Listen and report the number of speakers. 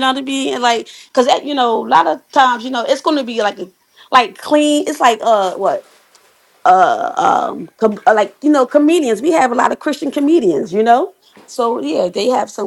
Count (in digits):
1